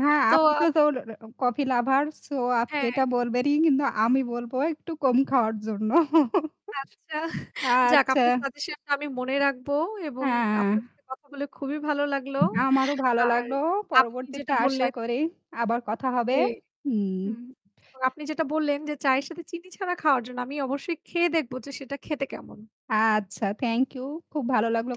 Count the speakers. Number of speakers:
two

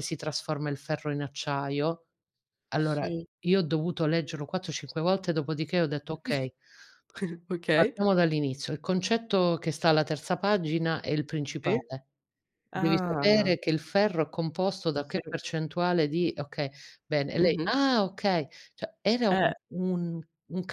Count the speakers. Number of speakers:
two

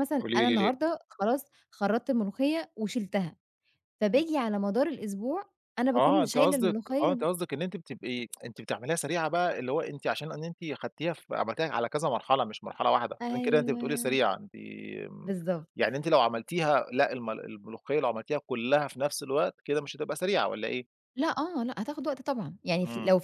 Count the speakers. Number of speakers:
two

